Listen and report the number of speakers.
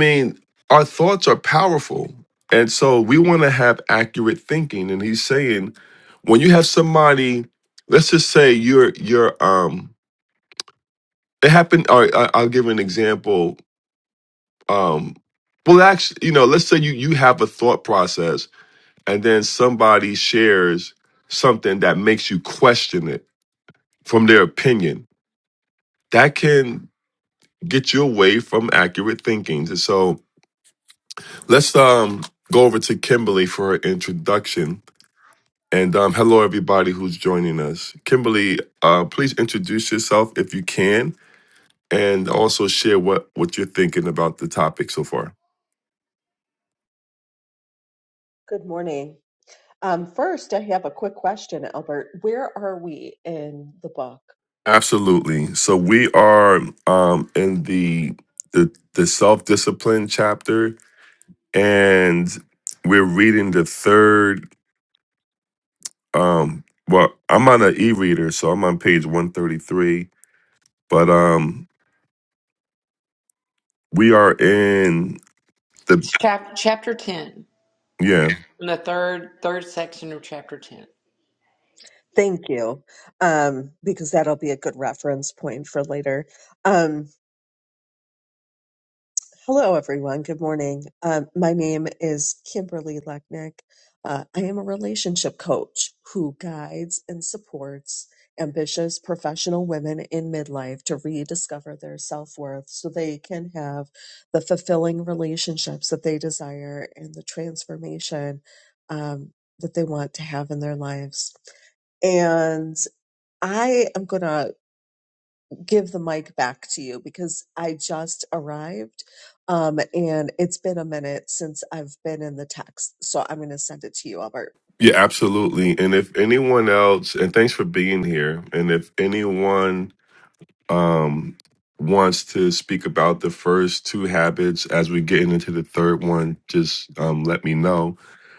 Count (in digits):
3